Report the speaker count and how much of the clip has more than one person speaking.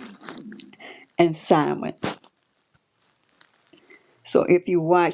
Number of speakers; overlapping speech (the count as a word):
one, no overlap